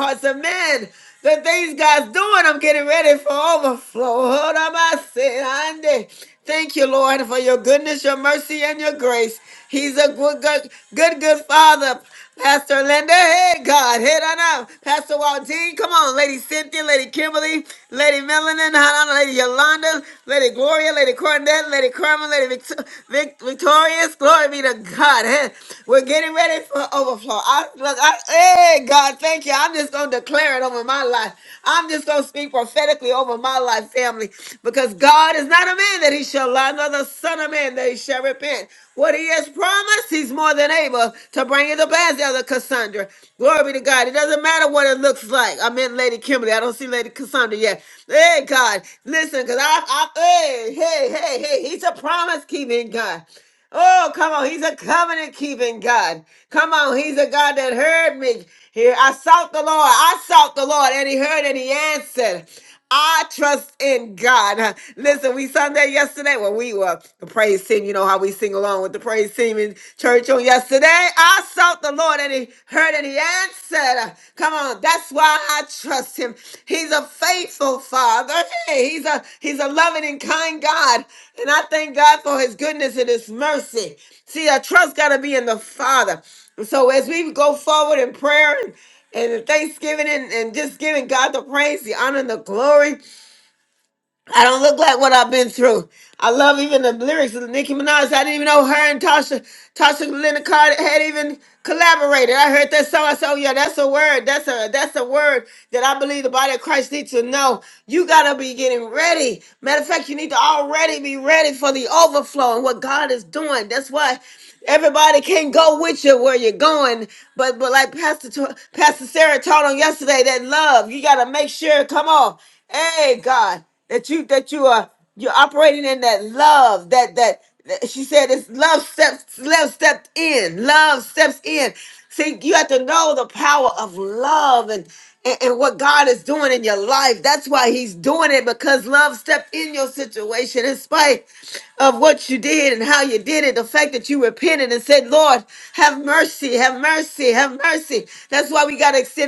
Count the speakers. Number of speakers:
one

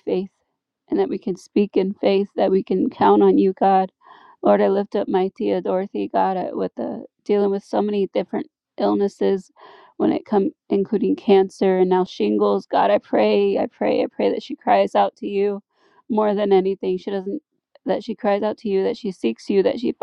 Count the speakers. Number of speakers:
one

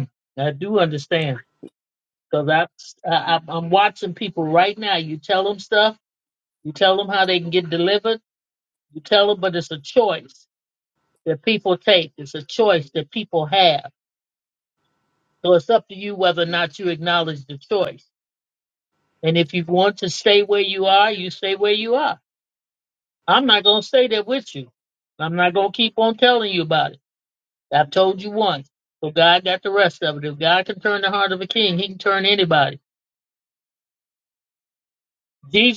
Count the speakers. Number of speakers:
one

